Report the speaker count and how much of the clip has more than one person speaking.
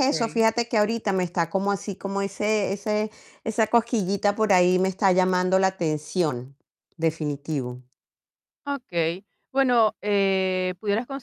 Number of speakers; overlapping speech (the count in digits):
2, about 3%